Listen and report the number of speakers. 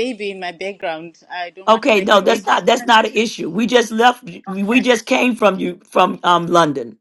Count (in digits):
2